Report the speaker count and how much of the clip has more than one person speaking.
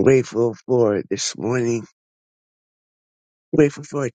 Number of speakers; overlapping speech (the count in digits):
1, no overlap